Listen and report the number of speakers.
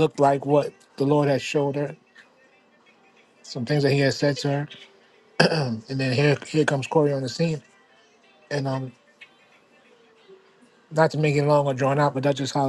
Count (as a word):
one